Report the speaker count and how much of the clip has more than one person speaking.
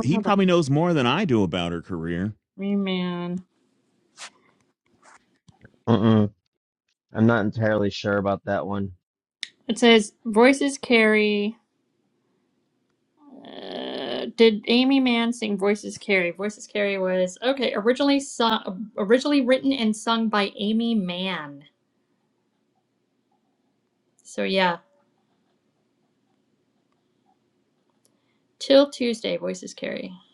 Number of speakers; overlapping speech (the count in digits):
3, about 1%